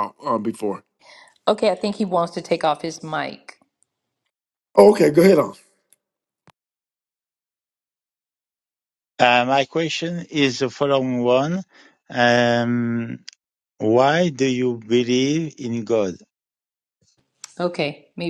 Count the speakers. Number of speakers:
3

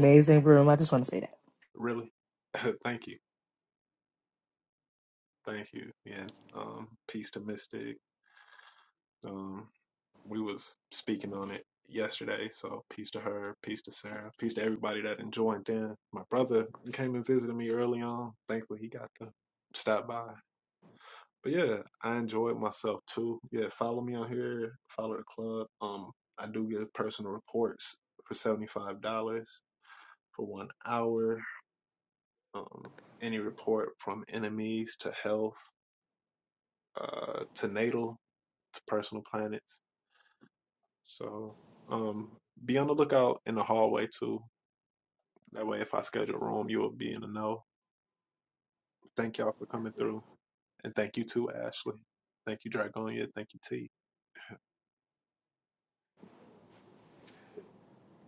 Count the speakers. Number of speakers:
2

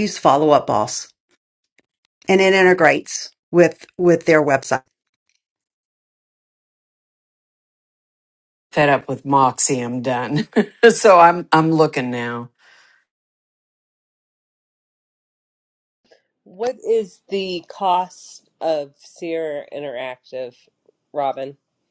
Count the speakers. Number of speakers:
3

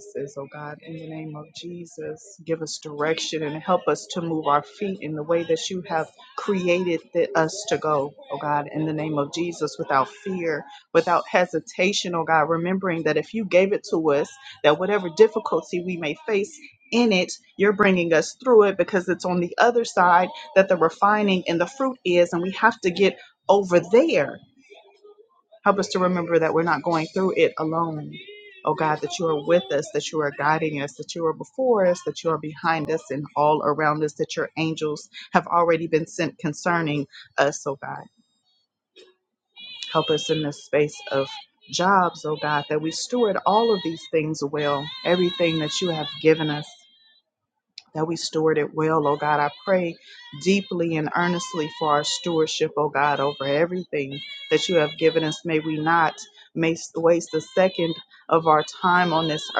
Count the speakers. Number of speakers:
1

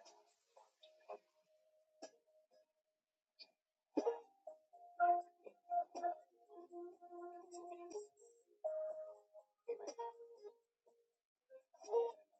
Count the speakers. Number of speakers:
0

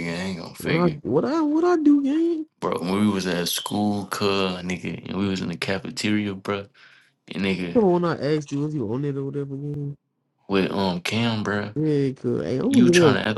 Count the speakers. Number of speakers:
2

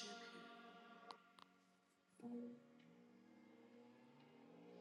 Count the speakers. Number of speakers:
0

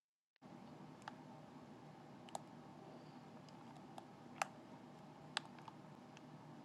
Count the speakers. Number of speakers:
0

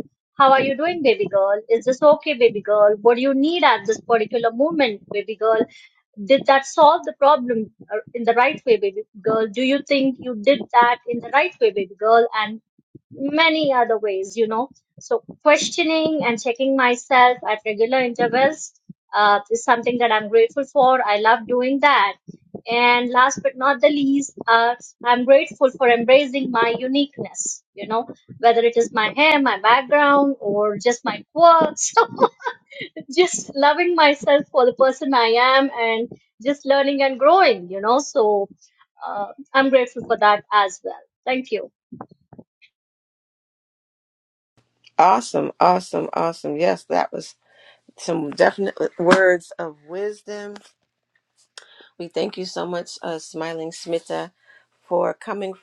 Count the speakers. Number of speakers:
2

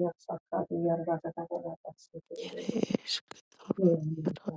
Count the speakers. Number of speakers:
2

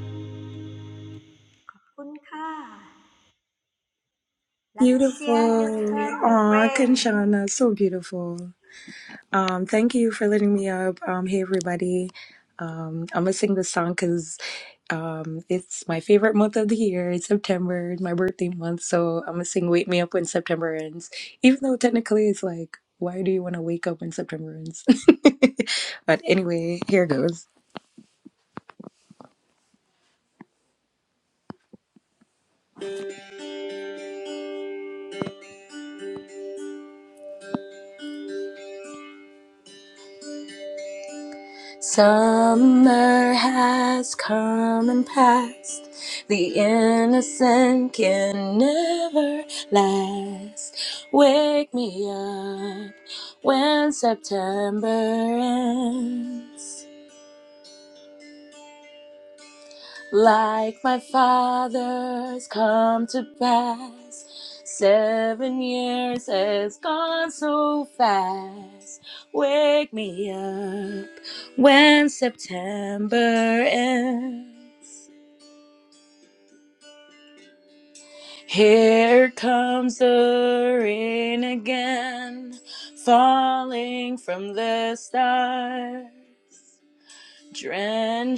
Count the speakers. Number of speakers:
2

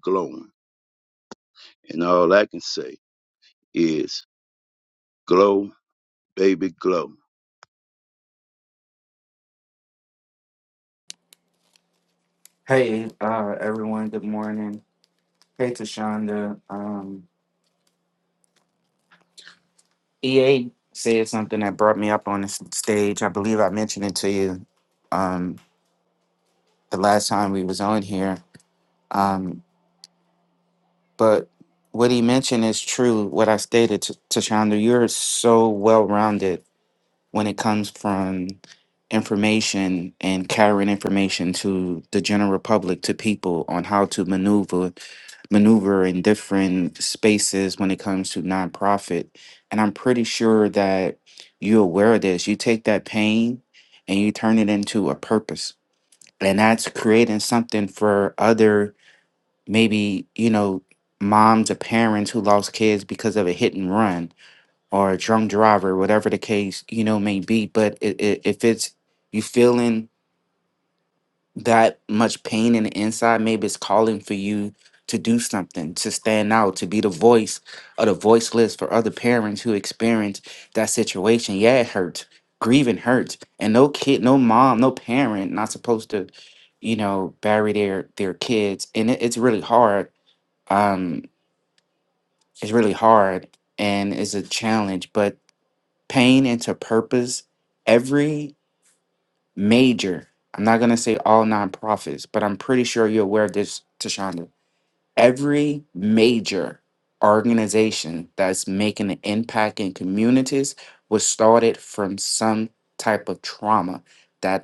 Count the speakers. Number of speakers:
2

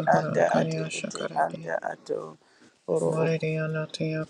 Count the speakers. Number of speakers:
2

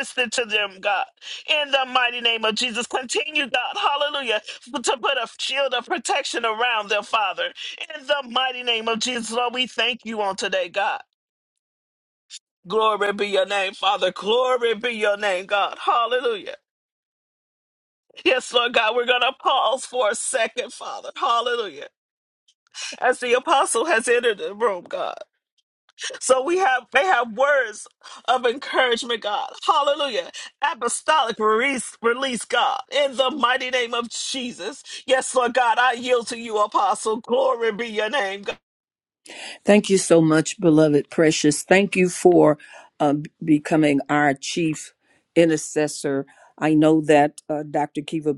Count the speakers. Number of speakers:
2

